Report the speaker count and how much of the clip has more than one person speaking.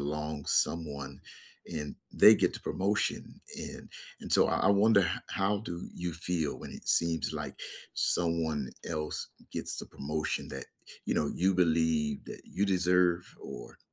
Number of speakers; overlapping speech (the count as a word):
one, no overlap